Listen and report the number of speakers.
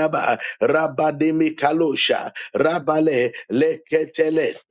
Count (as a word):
one